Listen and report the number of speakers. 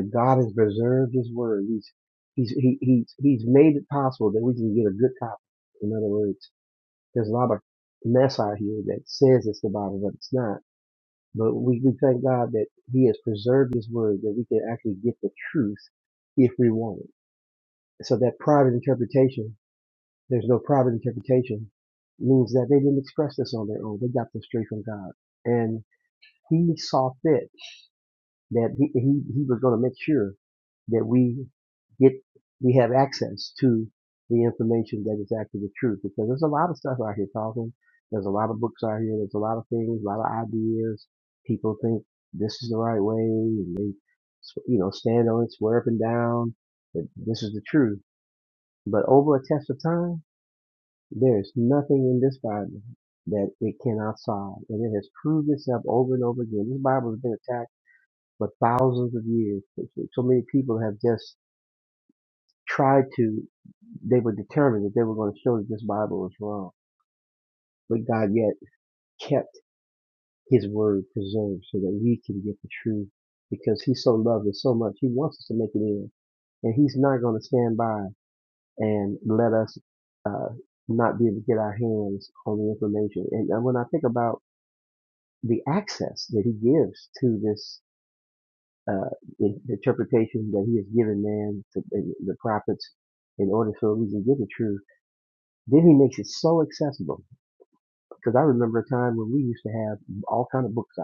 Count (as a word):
one